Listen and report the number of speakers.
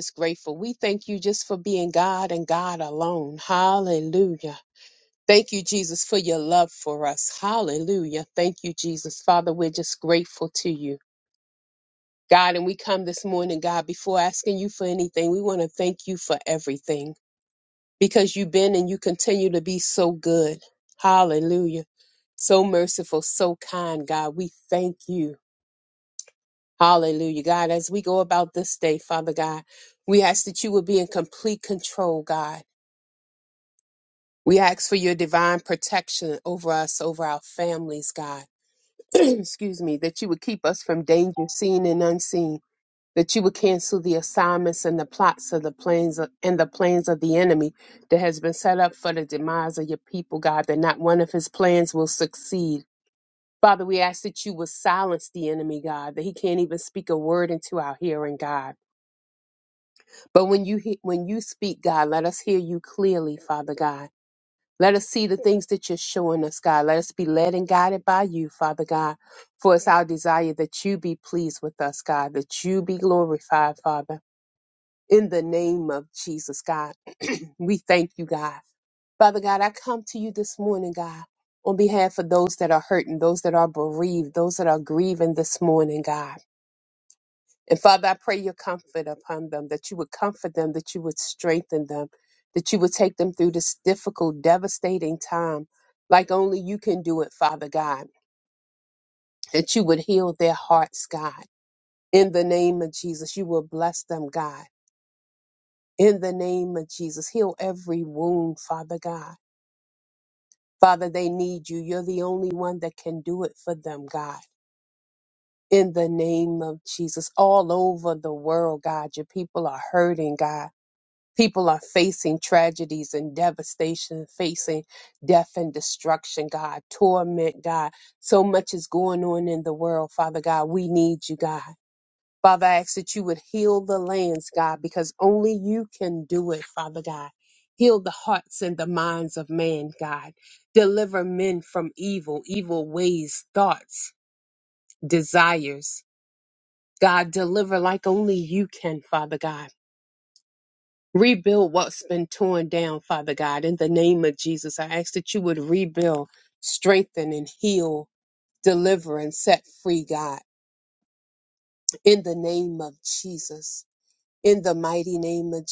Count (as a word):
one